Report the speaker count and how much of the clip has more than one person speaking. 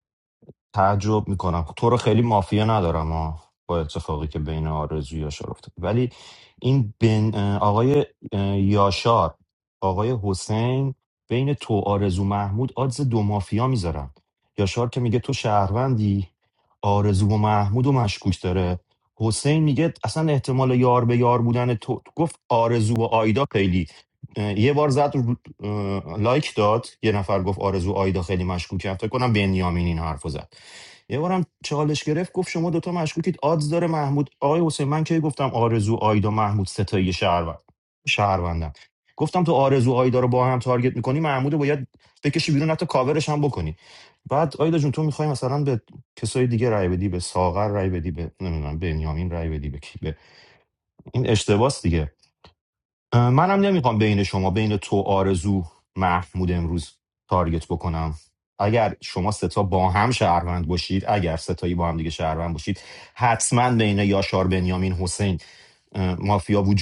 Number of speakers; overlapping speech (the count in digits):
1, no overlap